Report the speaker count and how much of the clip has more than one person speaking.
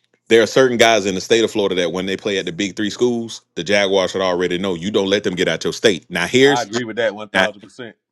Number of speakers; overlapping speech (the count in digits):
2, about 6%